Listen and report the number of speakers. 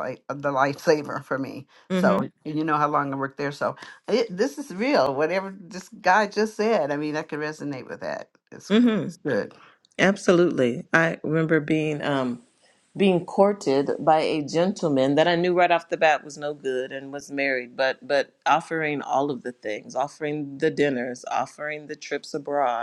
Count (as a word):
two